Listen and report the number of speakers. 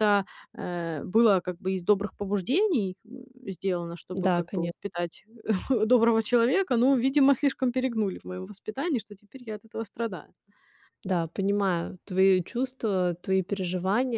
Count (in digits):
2